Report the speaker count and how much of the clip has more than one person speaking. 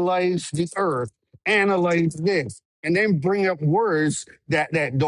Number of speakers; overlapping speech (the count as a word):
one, no overlap